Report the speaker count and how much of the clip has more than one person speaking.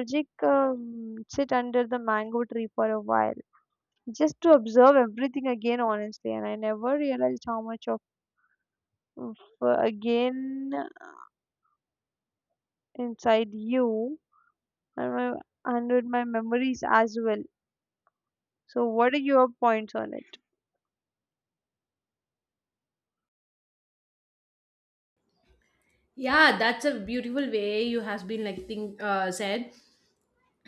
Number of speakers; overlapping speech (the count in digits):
2, no overlap